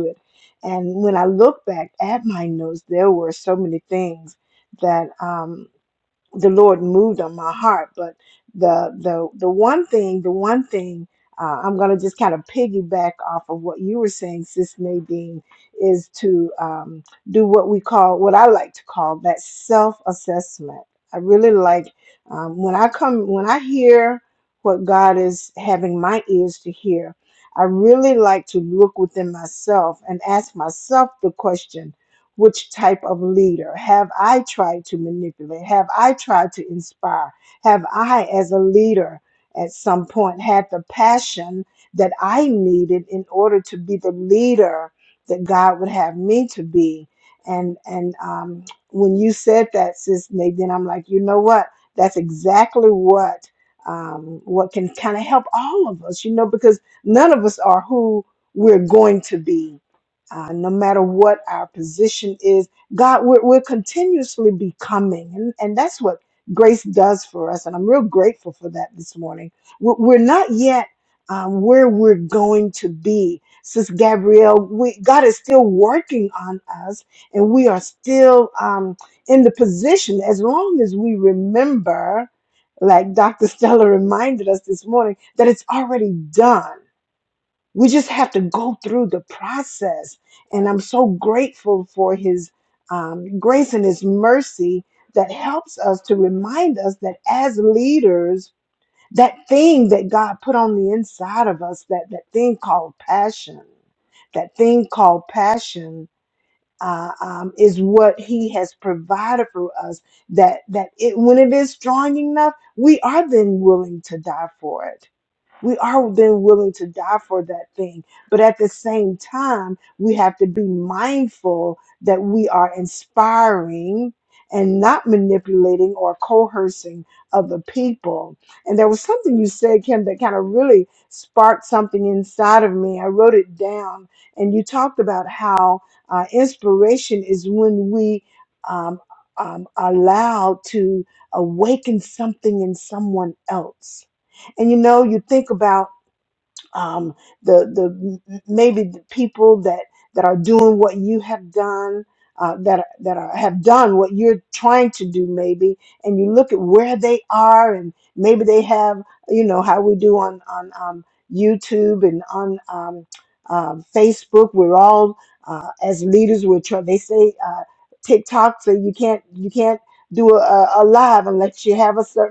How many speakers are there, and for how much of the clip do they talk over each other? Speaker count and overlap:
one, no overlap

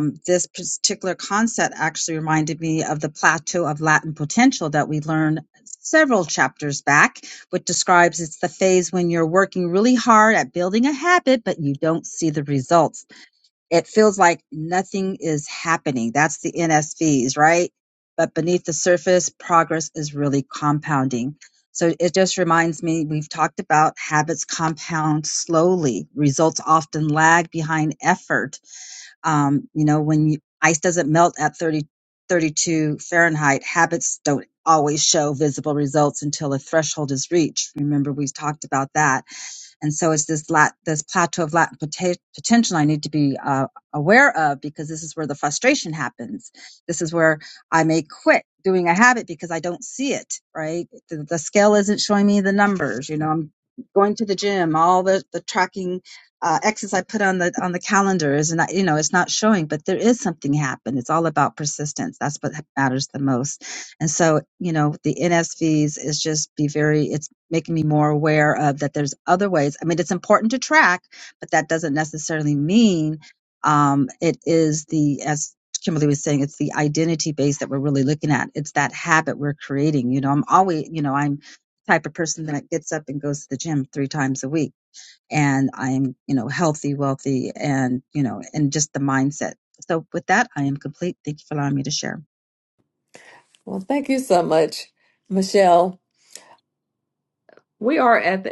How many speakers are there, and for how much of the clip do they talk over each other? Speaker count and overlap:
two, no overlap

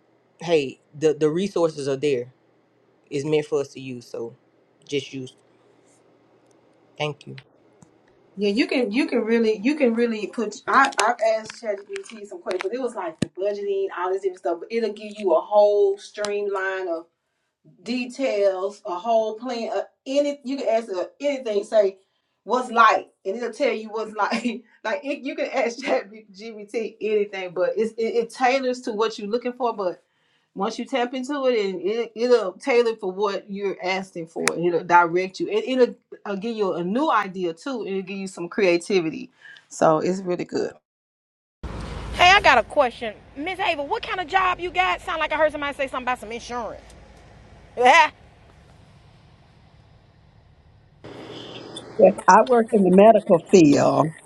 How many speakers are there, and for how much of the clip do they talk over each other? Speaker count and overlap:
four, no overlap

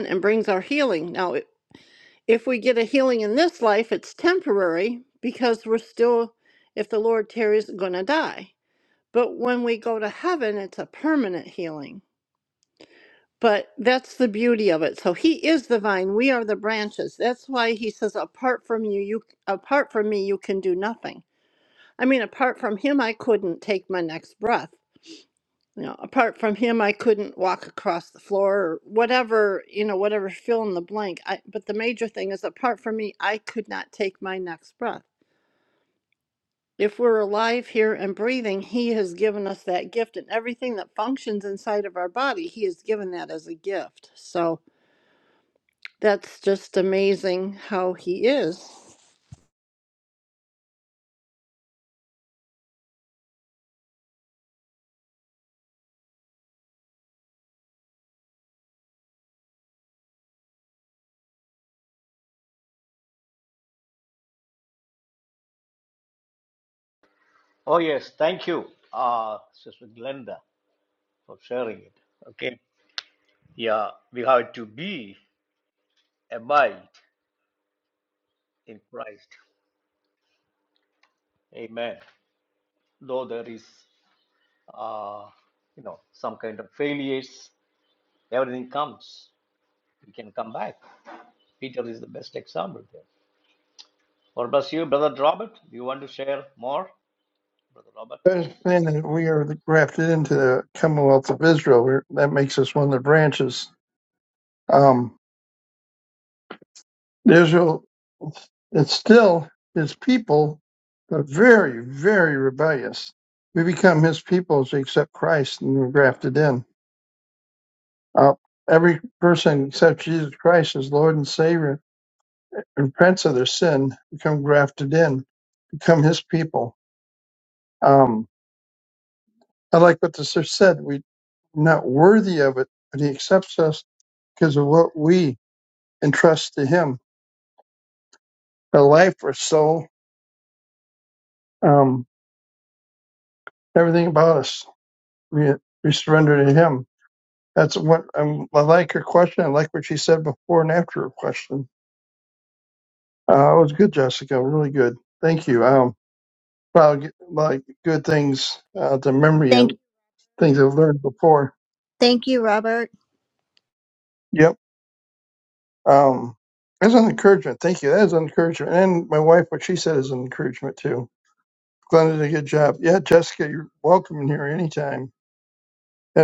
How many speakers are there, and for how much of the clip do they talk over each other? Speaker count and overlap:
four, under 1%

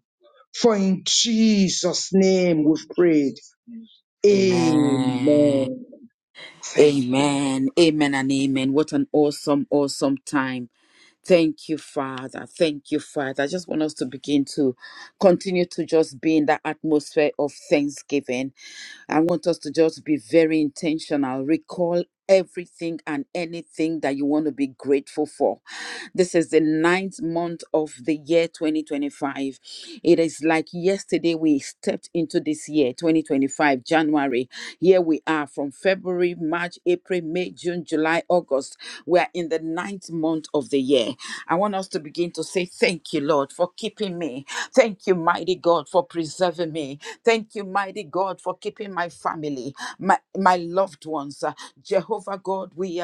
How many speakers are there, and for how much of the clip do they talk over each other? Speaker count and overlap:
two, about 2%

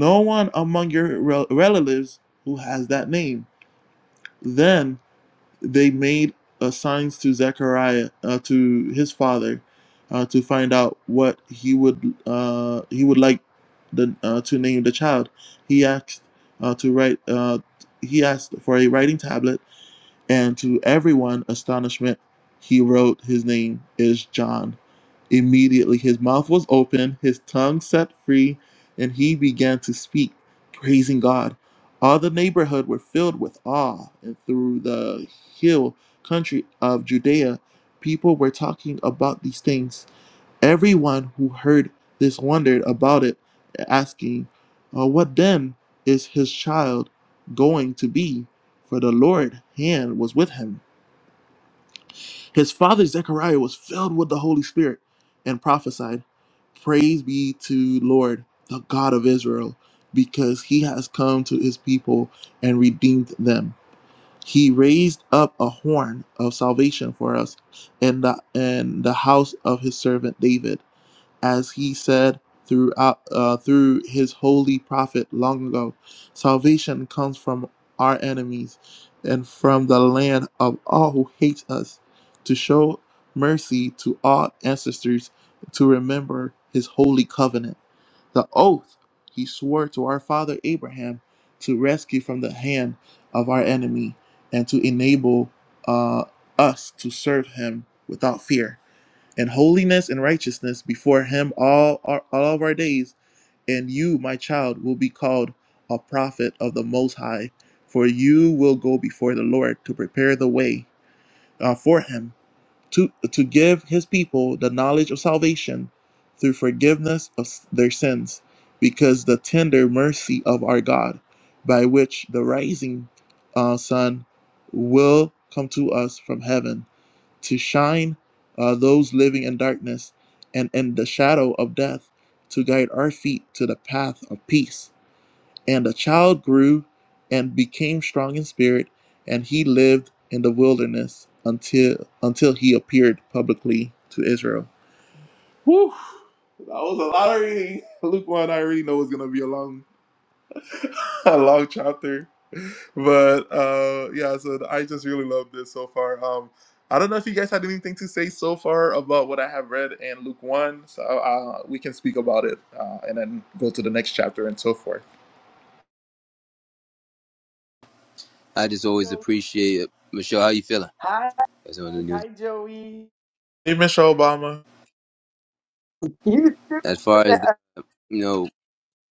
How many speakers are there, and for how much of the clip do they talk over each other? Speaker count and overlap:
three, about 1%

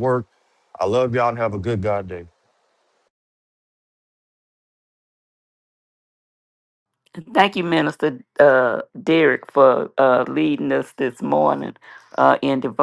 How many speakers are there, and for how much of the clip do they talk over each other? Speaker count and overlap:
two, no overlap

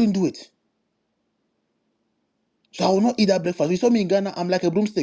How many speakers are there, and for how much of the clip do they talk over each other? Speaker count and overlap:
one, no overlap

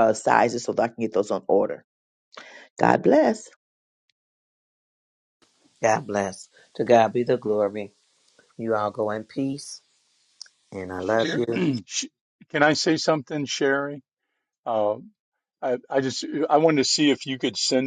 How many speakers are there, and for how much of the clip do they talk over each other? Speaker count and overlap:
three, about 3%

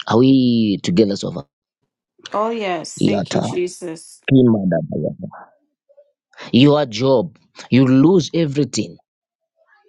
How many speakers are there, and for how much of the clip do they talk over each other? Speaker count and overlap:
two, about 5%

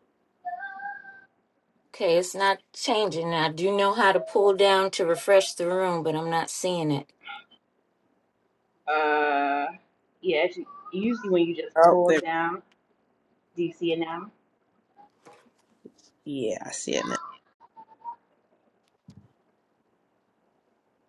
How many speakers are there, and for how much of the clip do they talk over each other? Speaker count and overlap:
three, about 2%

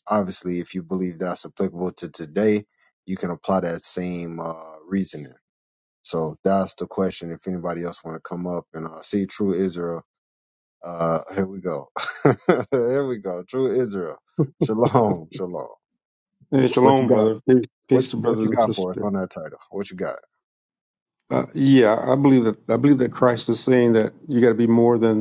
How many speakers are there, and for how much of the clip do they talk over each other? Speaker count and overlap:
two, about 6%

